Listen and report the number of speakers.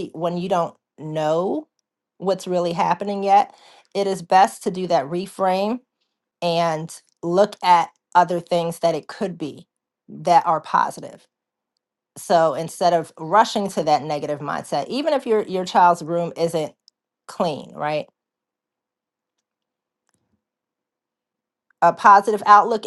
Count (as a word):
one